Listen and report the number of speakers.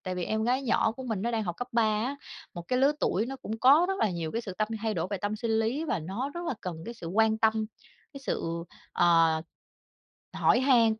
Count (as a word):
one